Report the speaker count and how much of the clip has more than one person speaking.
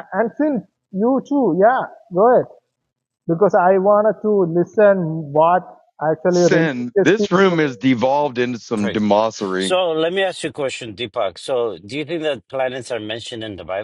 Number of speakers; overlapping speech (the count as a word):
three, about 11%